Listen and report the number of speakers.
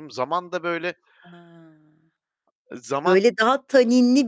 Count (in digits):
2